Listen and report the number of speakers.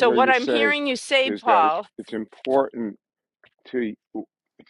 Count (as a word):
two